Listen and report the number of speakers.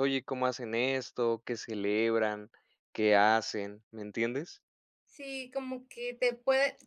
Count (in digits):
2